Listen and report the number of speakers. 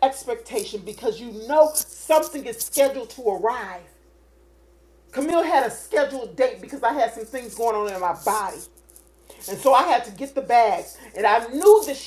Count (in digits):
1